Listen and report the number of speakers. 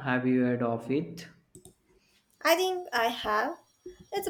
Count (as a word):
two